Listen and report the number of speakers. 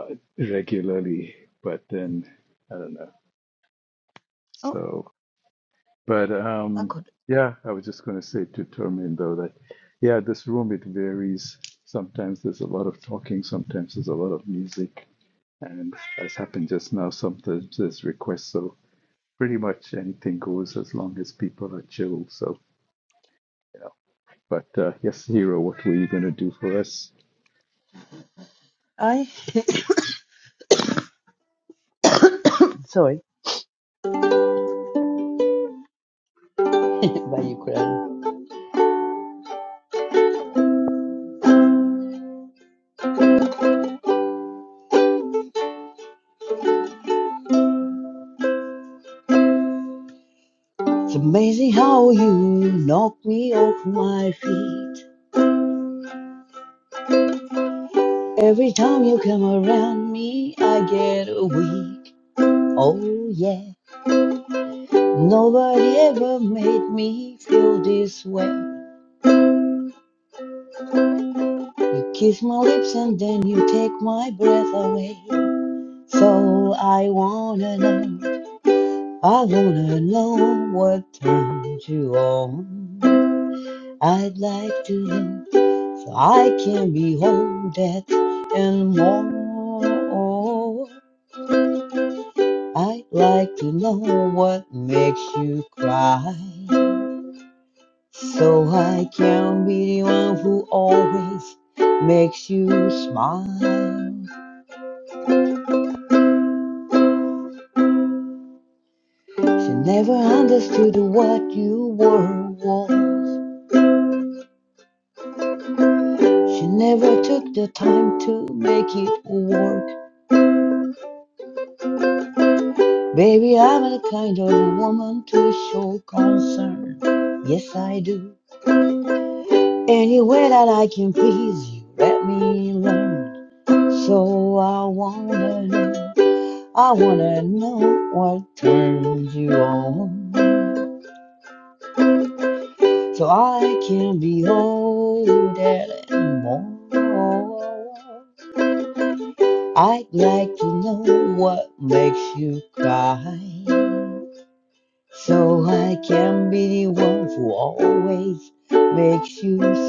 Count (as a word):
two